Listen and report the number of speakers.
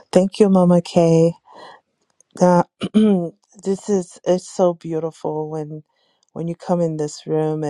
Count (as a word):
one